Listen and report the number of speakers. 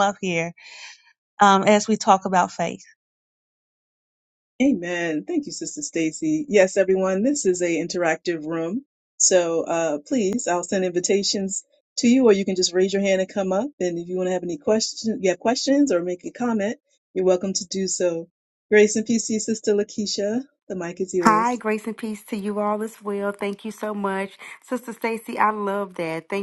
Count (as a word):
three